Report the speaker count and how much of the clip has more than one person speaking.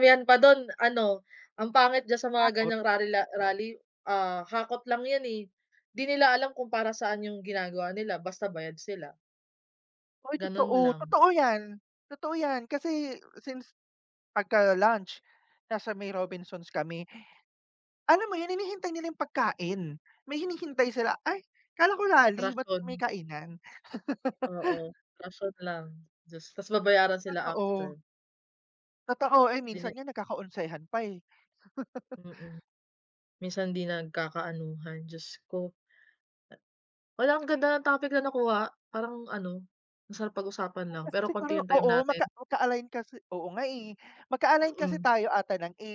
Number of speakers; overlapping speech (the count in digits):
2, about 8%